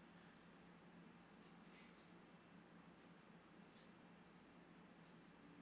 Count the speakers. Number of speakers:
zero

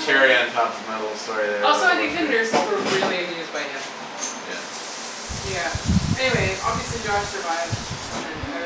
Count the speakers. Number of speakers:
two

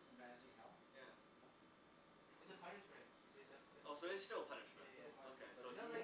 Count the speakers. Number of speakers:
three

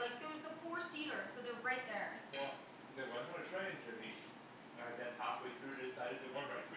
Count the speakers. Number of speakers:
two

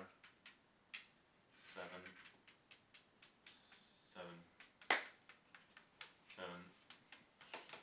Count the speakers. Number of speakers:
one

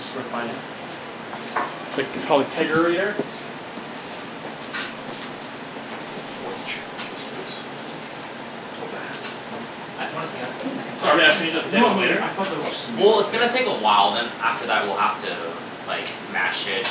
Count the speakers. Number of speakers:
three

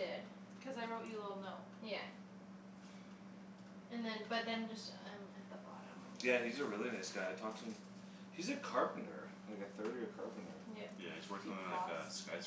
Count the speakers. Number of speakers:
four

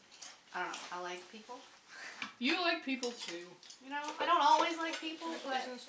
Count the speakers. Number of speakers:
two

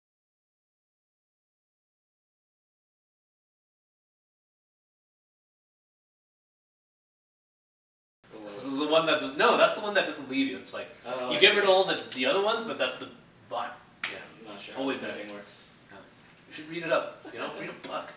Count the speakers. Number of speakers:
two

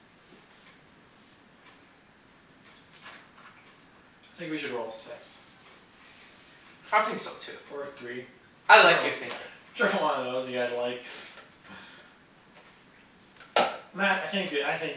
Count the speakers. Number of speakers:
two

